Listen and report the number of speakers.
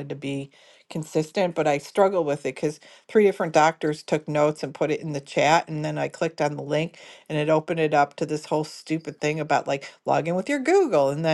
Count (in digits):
1